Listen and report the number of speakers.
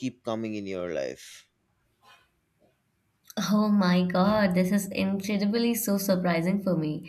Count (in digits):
2